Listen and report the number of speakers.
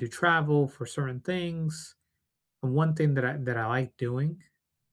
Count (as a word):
one